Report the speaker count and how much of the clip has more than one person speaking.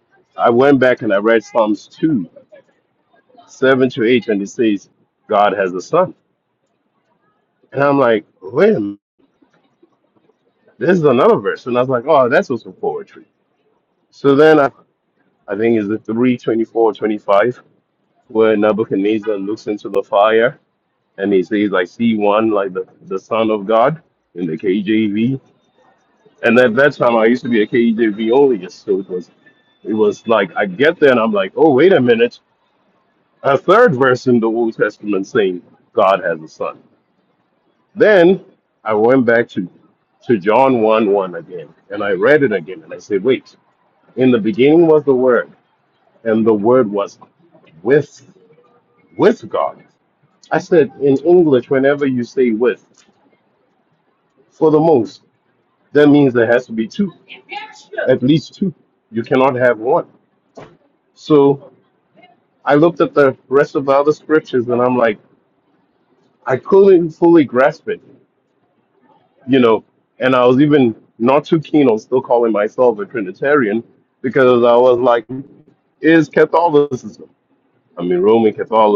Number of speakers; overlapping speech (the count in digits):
1, no overlap